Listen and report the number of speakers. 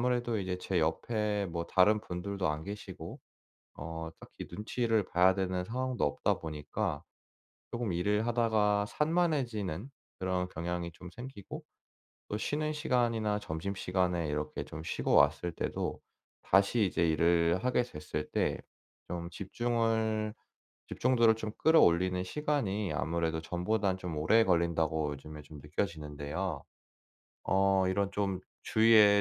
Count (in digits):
1